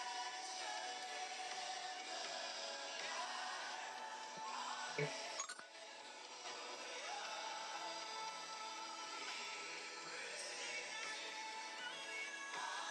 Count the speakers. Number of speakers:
0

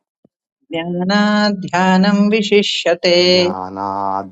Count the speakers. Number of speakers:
2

